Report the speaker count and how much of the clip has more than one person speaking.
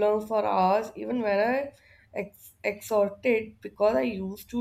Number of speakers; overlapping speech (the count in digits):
1, no overlap